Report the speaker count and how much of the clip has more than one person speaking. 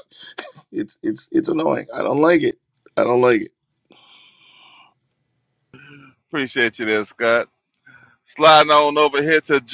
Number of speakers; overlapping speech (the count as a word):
two, no overlap